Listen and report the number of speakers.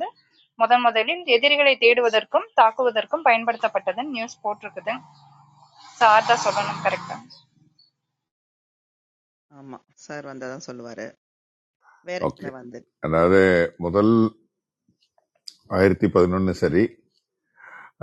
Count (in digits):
3